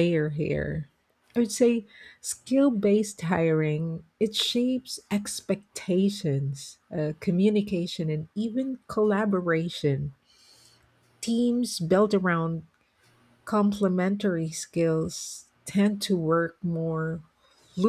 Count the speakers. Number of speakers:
1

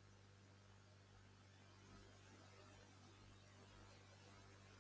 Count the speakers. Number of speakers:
0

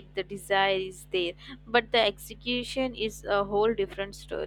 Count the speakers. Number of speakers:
1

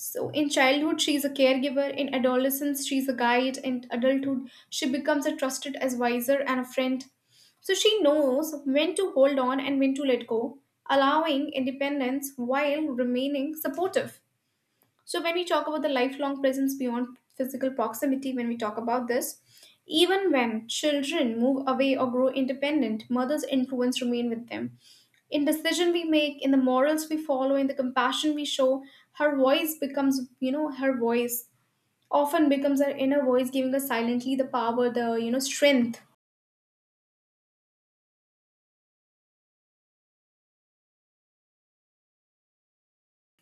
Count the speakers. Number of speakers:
1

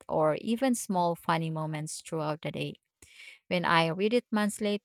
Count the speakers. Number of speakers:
1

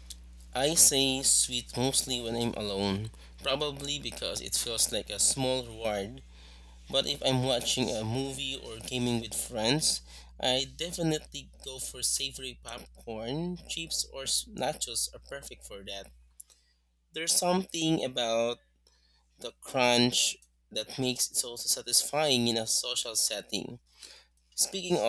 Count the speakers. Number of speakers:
1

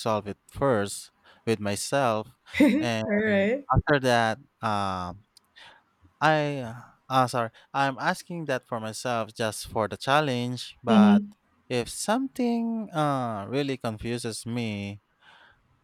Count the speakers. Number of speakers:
2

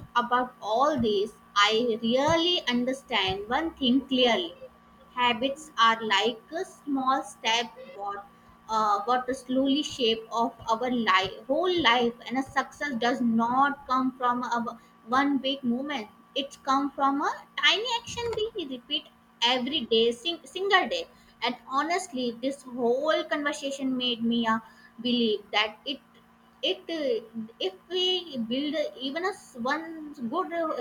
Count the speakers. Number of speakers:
1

